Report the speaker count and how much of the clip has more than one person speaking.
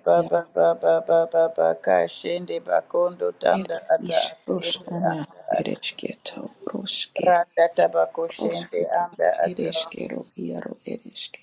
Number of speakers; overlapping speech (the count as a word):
two, about 31%